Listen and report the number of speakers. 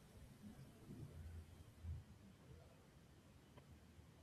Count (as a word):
zero